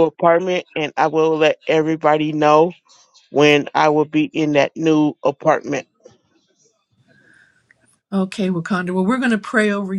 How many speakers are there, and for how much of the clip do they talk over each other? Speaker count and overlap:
2, no overlap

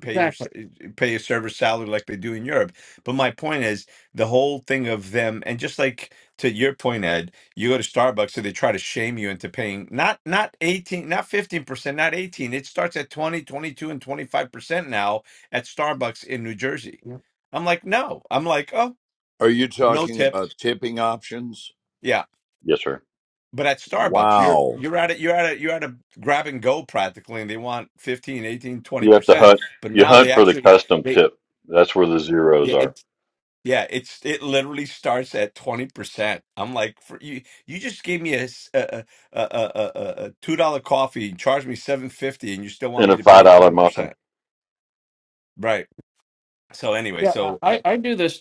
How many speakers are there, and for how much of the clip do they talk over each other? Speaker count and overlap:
4, about 10%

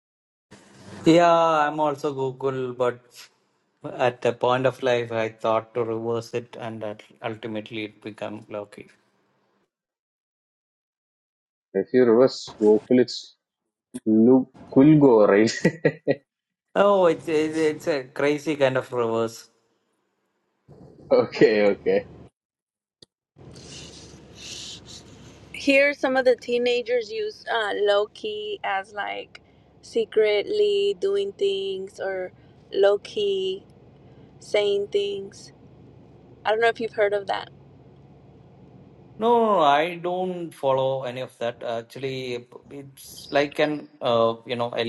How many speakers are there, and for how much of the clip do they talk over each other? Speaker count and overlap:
3, no overlap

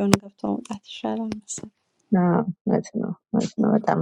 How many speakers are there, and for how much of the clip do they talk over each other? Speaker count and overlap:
2, no overlap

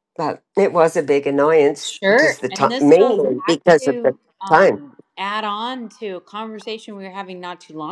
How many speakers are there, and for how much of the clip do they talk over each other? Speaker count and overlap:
2, about 29%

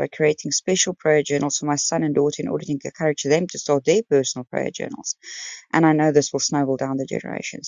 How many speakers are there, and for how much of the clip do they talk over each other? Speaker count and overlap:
1, no overlap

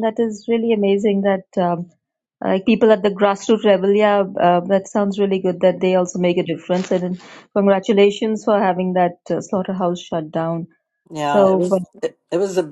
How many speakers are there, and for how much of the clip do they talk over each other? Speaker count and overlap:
2, about 3%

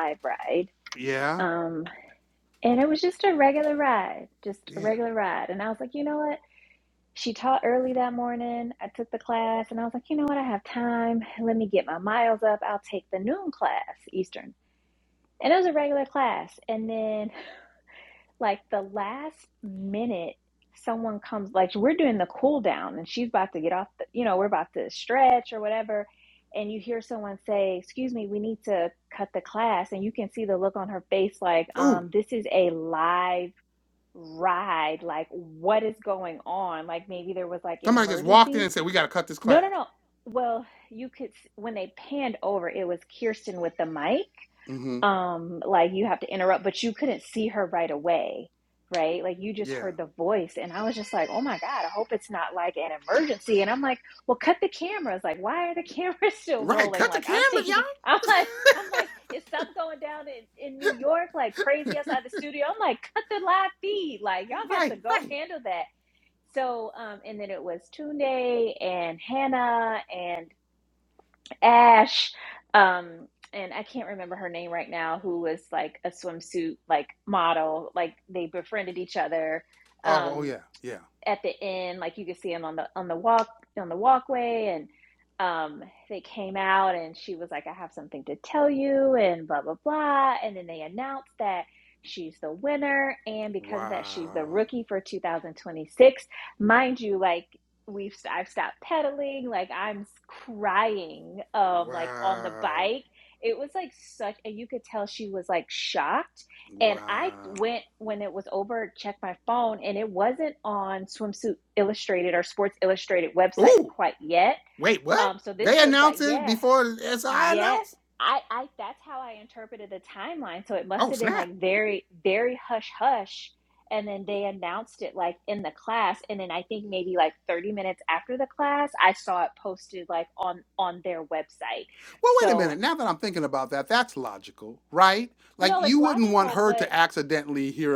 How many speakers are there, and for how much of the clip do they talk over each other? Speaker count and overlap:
2, about 9%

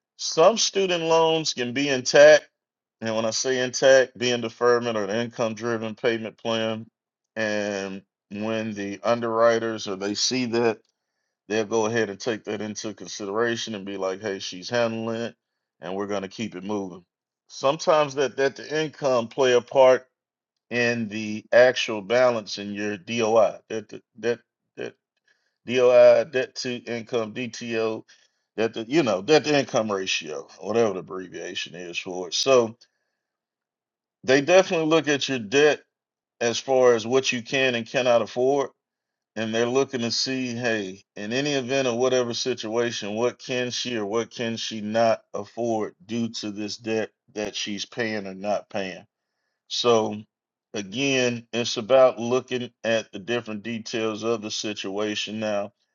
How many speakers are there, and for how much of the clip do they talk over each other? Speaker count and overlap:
1, no overlap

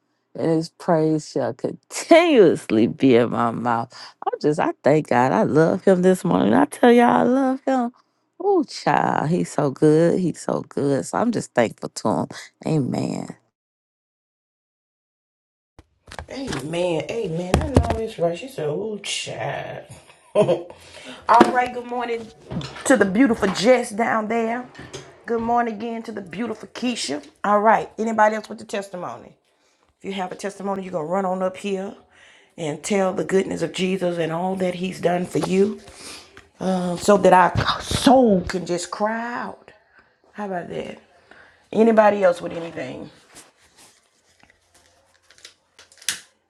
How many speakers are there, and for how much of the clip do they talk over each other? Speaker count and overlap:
2, no overlap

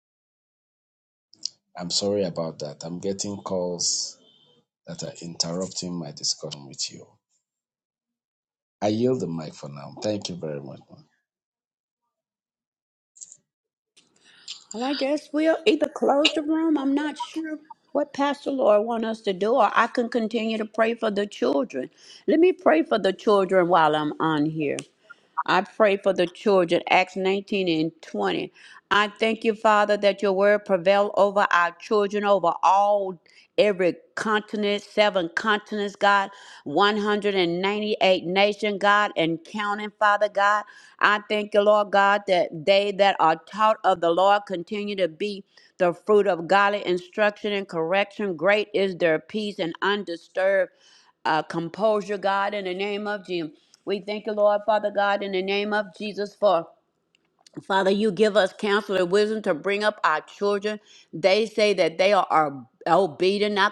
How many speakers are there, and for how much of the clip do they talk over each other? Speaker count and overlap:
2, no overlap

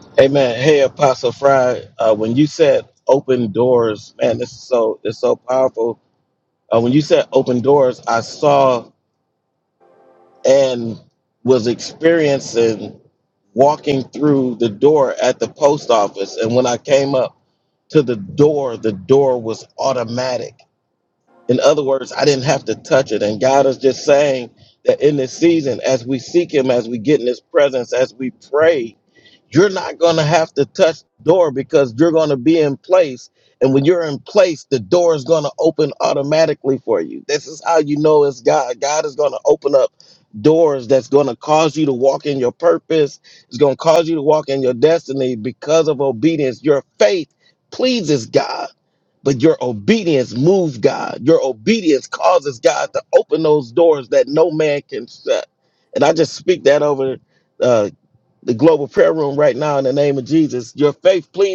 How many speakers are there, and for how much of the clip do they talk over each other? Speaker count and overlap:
1, no overlap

